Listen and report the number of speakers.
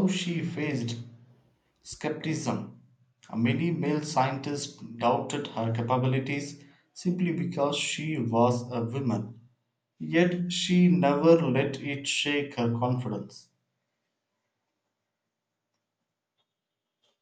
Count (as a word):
one